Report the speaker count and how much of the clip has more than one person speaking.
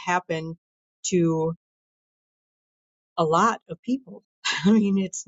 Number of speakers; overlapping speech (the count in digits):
1, no overlap